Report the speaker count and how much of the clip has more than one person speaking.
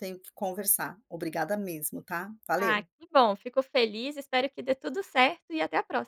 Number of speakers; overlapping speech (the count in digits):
2, about 4%